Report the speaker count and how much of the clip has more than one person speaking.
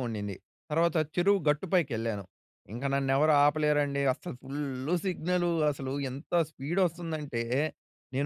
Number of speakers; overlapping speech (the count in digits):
1, no overlap